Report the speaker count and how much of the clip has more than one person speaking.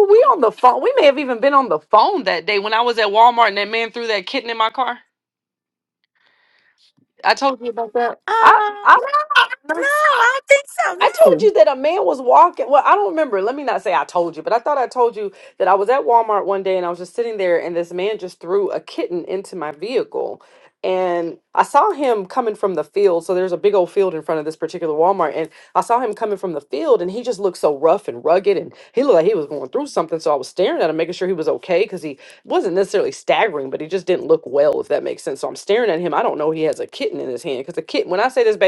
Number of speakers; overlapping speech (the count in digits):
2, about 1%